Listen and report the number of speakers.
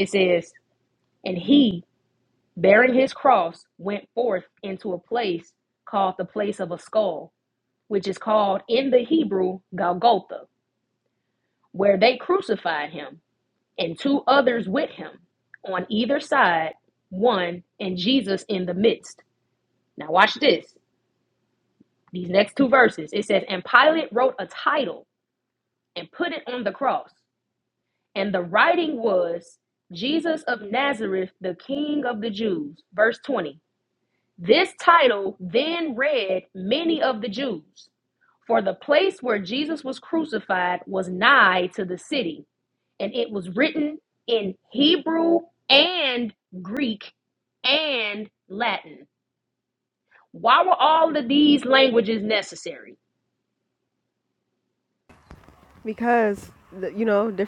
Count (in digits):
2